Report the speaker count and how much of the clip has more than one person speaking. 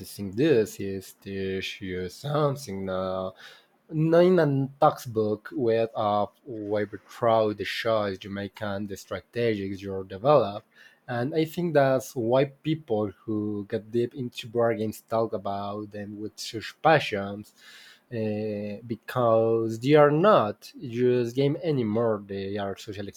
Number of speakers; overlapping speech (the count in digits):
1, no overlap